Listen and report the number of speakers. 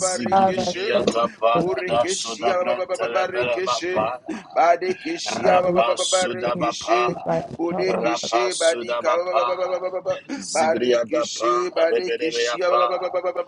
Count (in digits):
3